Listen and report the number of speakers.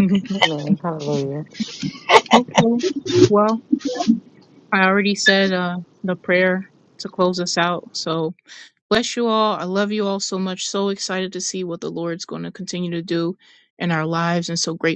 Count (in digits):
2